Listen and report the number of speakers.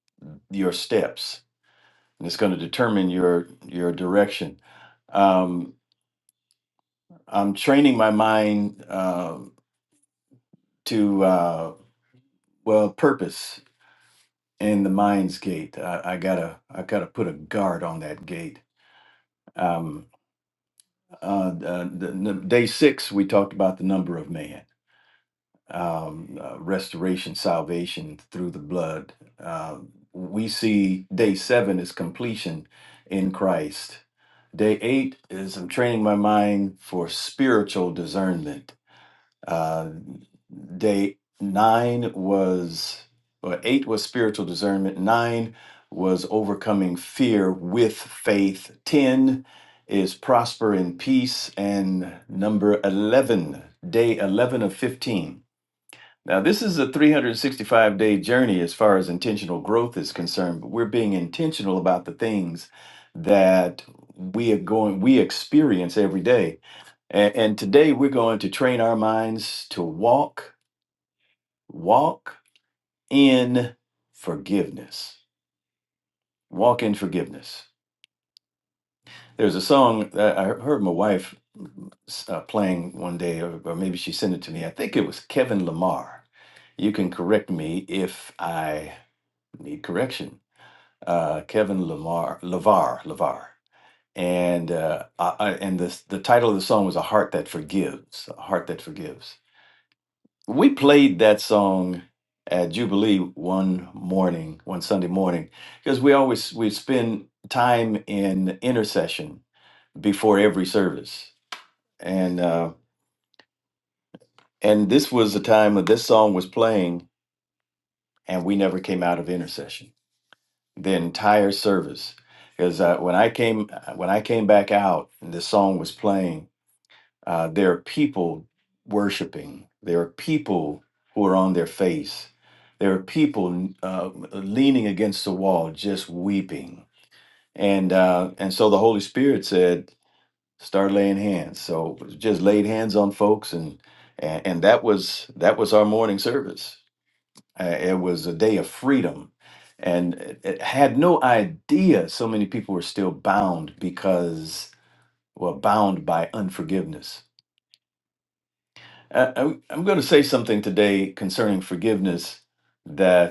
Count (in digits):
1